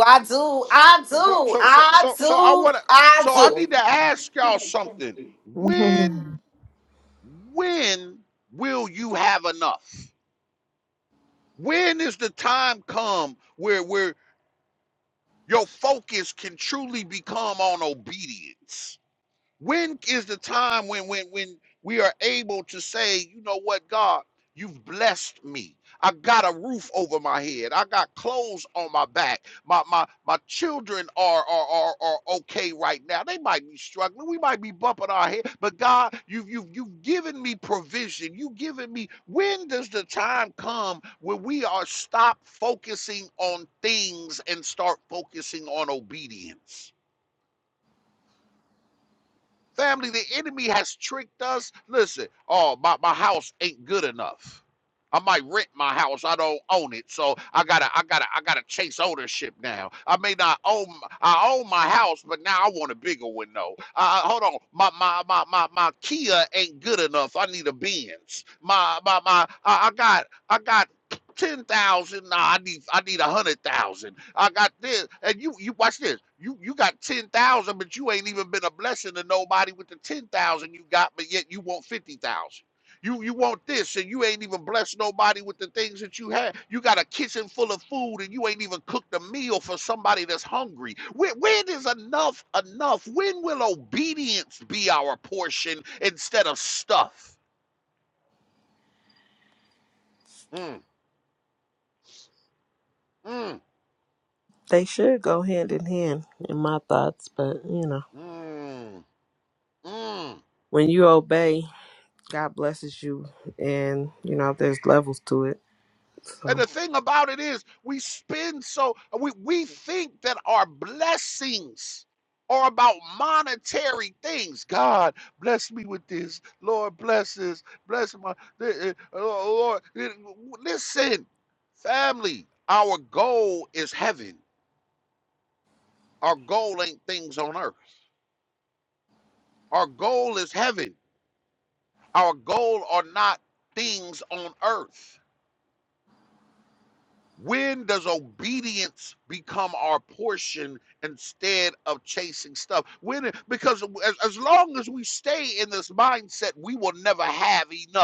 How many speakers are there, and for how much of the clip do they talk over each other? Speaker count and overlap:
three, about 2%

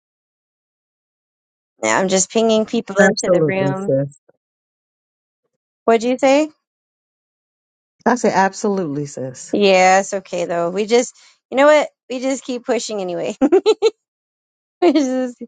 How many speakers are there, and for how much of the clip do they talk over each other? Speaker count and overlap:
two, about 6%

